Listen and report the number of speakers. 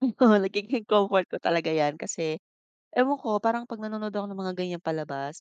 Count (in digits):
1